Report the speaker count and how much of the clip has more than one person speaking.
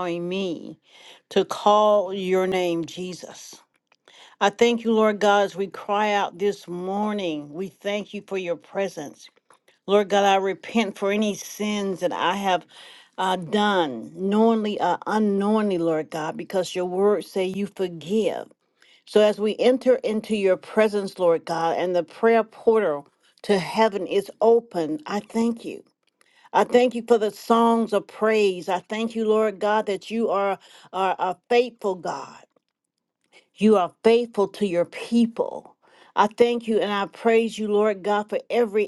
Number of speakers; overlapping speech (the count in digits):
1, no overlap